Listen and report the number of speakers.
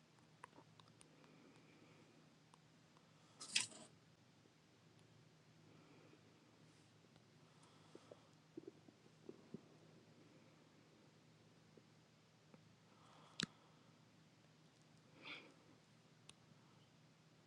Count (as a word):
zero